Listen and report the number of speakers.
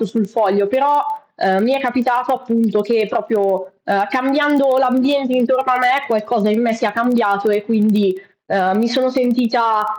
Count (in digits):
1